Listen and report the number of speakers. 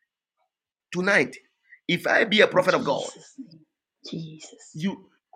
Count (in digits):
2